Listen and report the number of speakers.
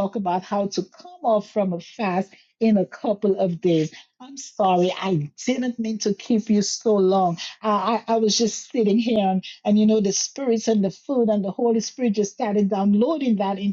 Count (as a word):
one